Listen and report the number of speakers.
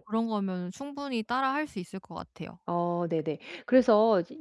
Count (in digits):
2